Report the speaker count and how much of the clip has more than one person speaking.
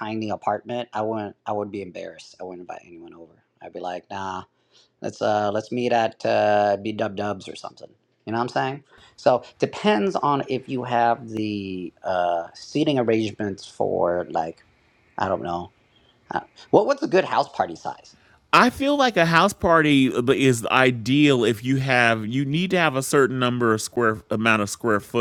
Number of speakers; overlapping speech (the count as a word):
two, no overlap